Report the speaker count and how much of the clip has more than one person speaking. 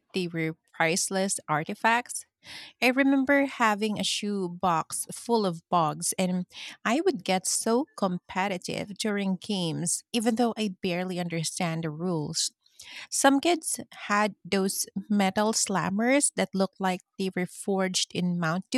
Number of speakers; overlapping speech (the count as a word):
one, no overlap